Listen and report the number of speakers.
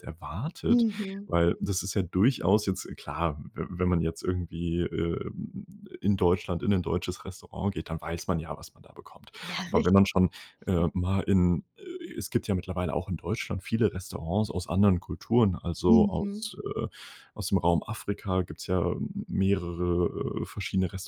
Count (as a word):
two